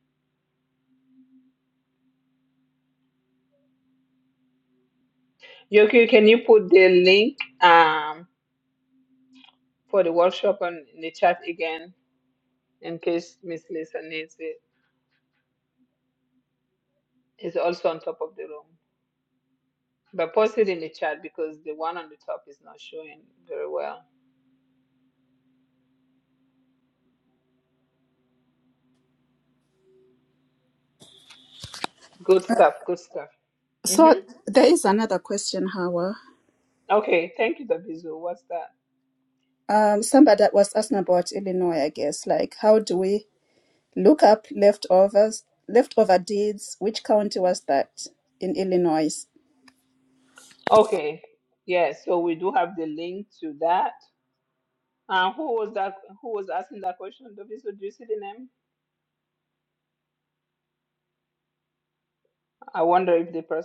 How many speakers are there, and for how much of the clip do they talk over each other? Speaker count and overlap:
2, about 1%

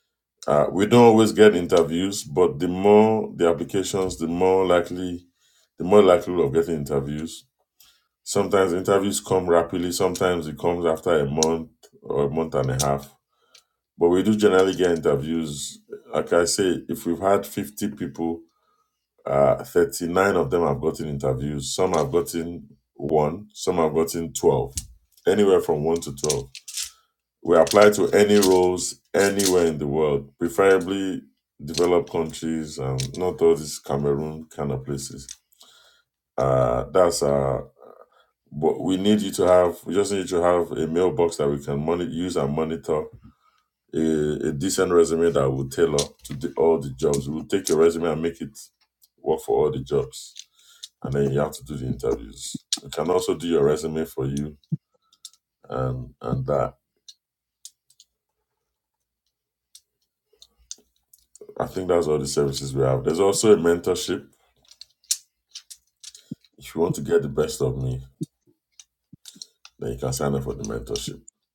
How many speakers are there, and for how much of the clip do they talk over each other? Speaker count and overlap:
1, no overlap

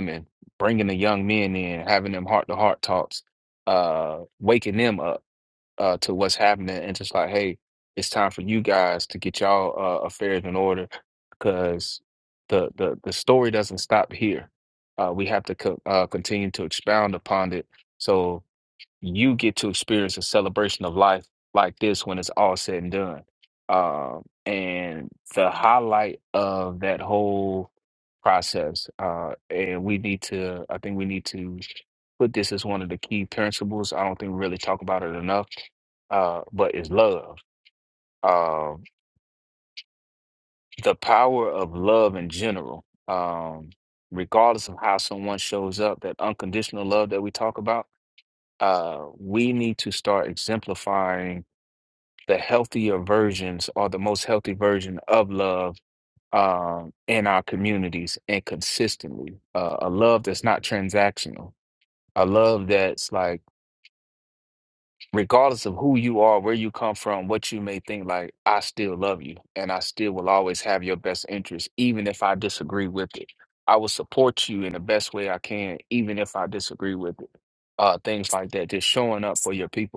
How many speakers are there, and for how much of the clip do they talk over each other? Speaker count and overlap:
1, no overlap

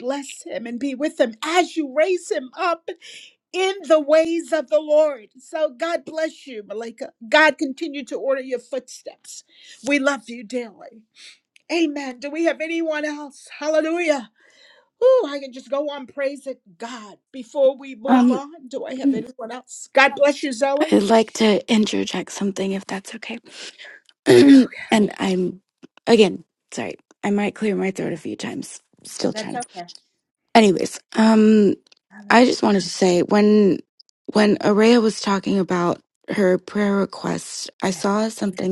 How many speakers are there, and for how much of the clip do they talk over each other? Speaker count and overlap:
2, about 4%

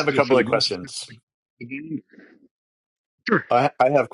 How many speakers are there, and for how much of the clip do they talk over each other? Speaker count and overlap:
2, about 26%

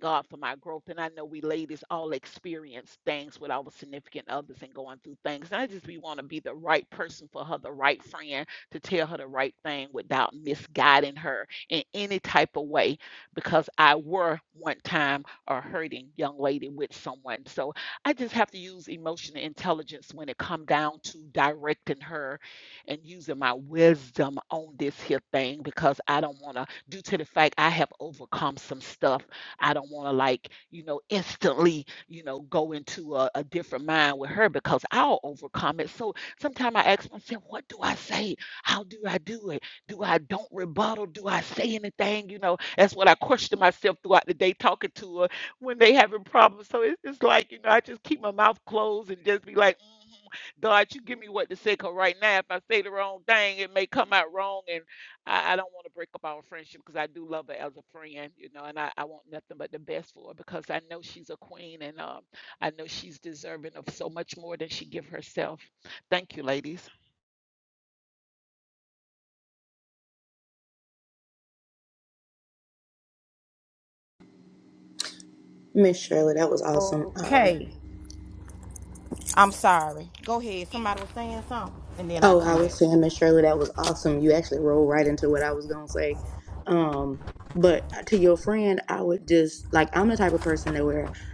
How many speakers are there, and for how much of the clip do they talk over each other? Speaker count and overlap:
3, about 1%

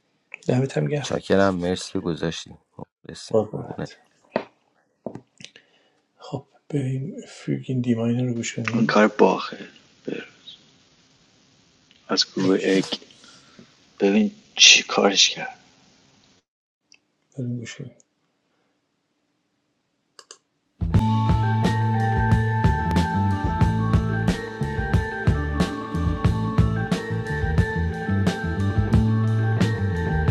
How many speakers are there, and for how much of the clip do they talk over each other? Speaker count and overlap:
3, about 4%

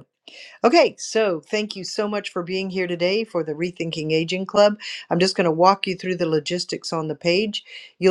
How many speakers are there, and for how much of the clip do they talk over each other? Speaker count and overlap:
1, no overlap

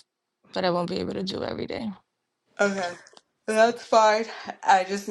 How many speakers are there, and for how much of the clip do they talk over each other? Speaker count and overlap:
2, no overlap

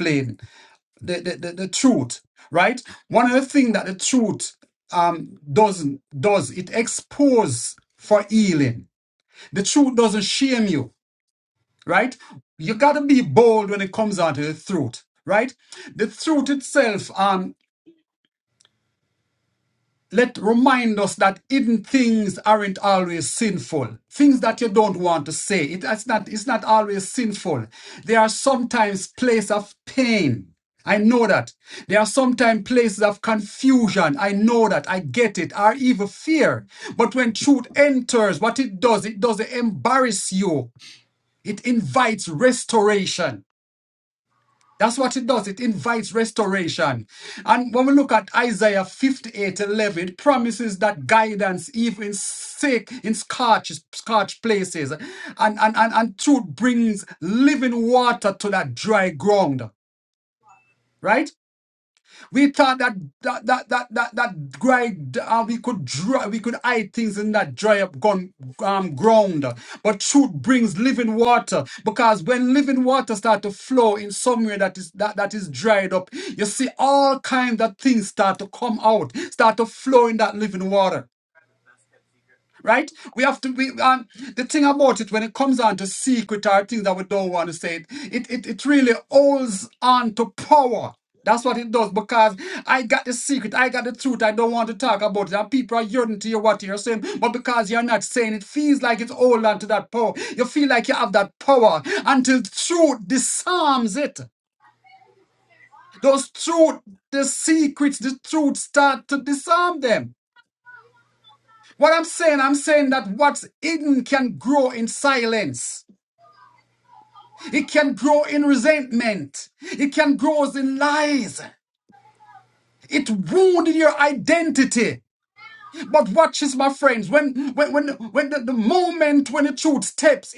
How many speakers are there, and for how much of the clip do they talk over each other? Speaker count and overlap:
1, no overlap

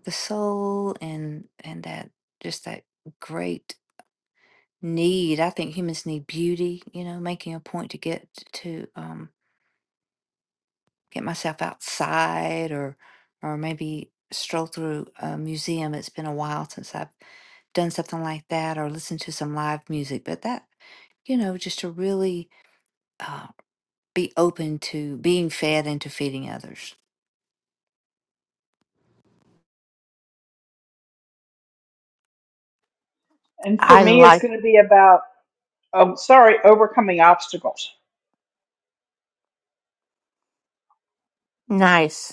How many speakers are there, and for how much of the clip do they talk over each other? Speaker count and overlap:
3, about 1%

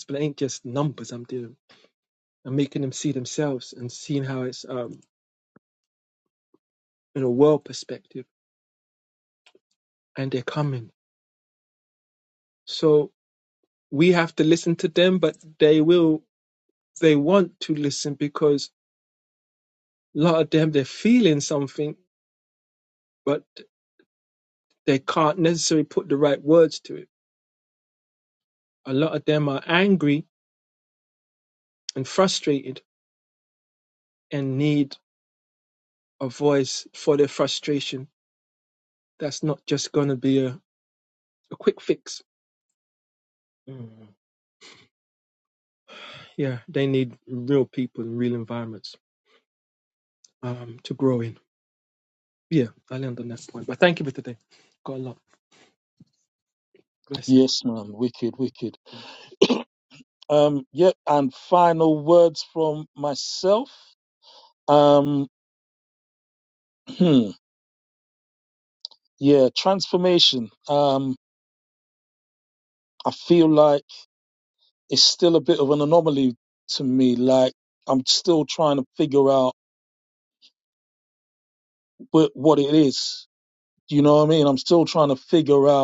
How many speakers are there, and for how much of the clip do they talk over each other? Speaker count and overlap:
2, no overlap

